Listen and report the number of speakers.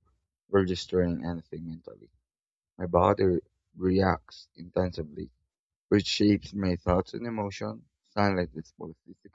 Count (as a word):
one